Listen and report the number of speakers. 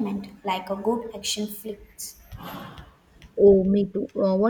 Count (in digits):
2